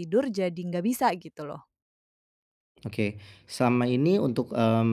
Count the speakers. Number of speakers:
2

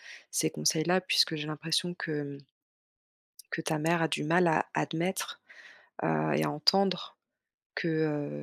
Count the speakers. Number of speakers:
1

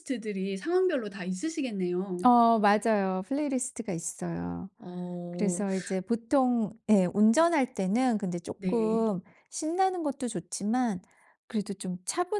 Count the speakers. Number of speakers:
2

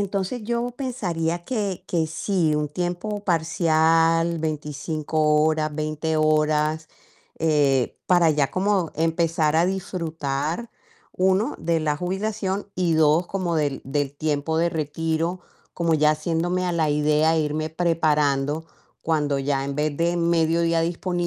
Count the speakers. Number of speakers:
1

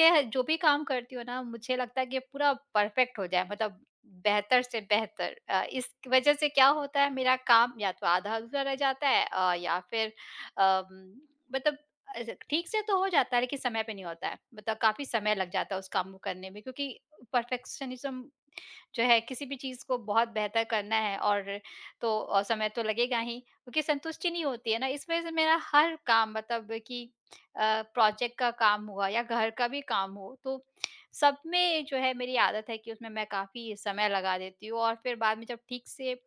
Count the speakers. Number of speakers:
1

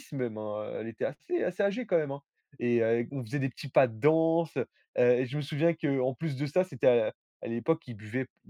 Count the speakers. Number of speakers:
1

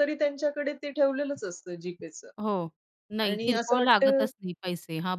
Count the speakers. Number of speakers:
2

